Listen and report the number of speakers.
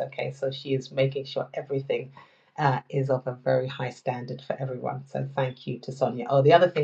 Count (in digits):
1